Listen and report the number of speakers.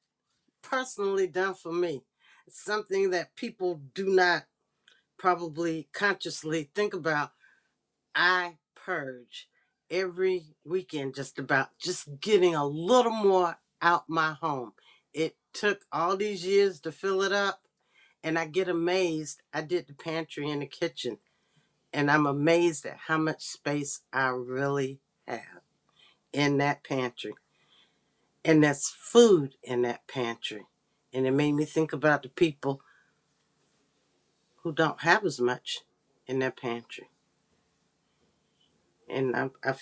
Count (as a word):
one